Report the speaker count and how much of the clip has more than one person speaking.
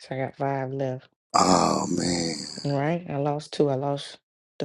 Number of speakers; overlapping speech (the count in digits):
2, no overlap